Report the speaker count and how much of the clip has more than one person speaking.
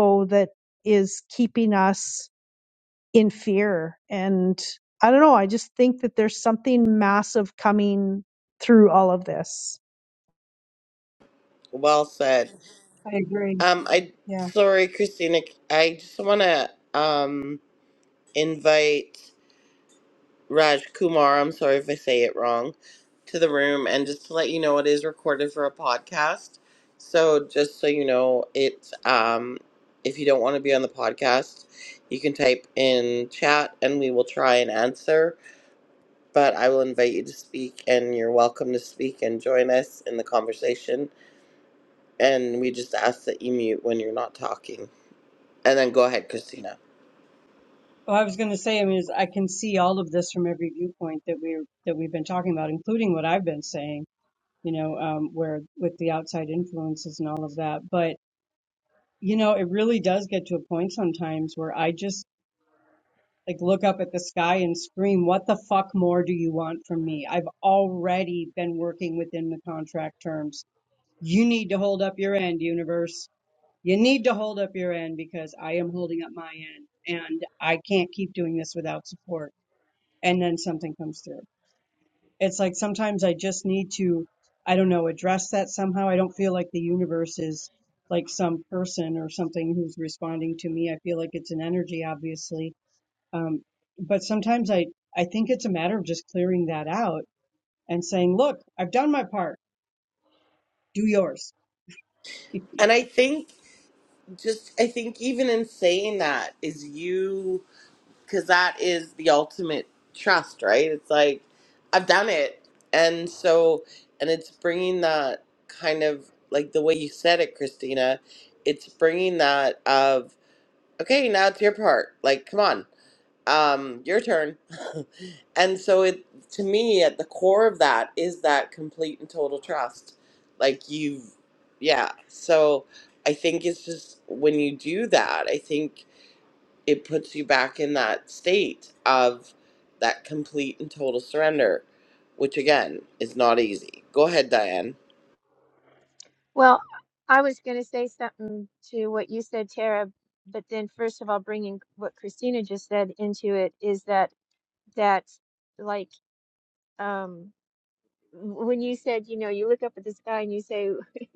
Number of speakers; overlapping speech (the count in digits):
4, under 1%